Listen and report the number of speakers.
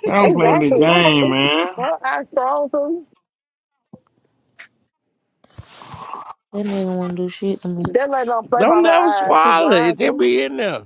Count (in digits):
4